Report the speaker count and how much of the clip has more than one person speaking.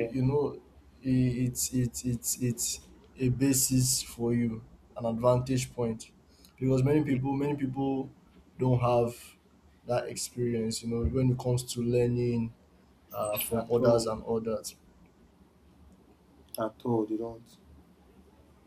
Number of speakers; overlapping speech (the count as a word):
two, about 4%